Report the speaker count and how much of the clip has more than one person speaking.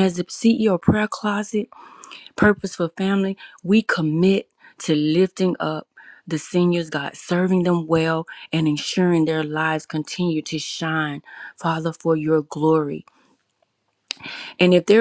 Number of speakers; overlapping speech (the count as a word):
one, no overlap